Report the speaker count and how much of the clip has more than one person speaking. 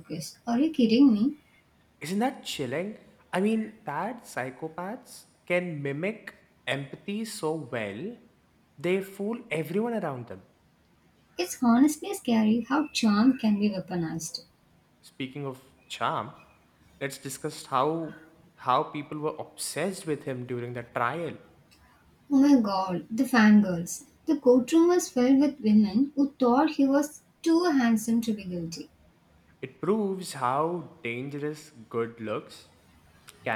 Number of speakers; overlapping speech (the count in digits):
2, no overlap